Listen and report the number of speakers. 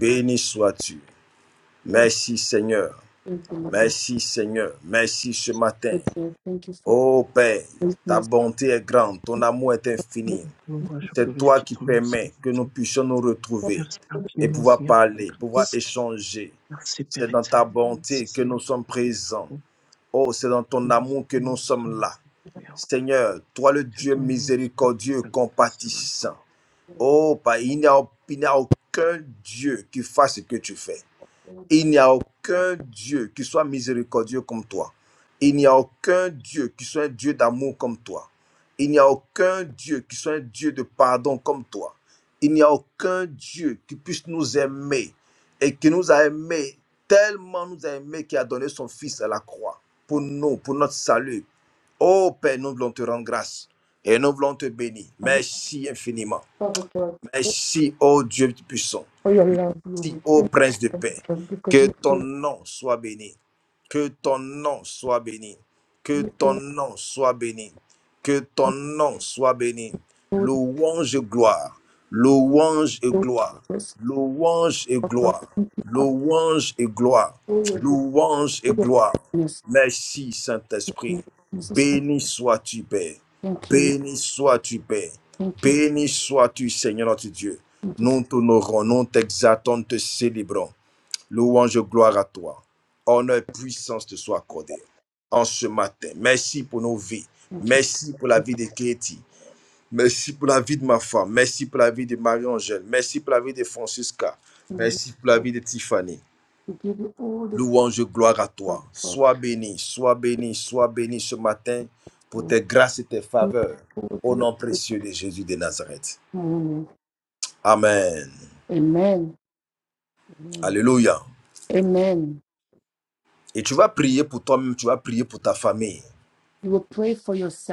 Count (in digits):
3